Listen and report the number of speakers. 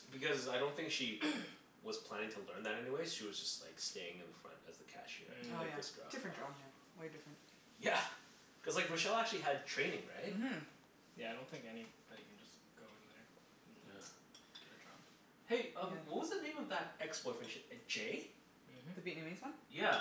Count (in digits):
3